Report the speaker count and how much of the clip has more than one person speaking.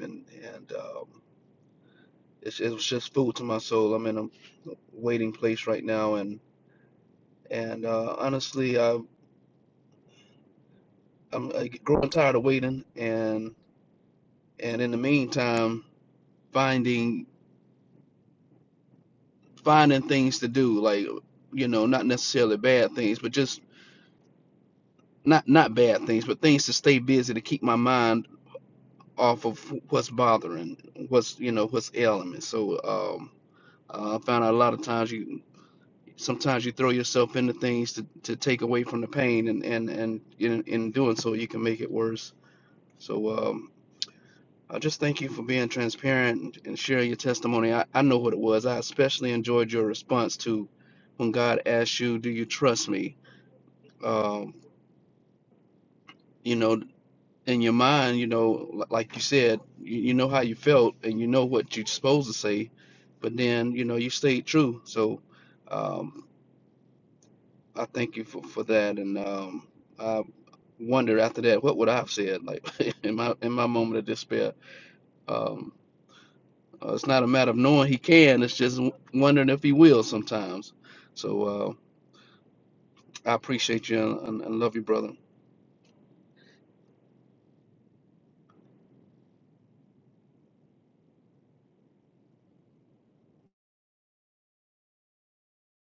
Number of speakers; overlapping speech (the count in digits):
1, no overlap